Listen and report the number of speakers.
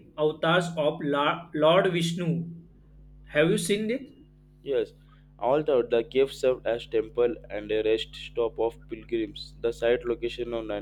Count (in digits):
2